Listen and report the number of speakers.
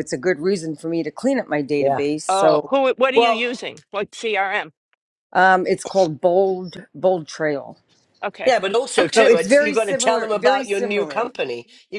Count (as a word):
three